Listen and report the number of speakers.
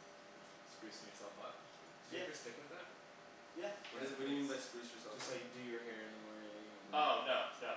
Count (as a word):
three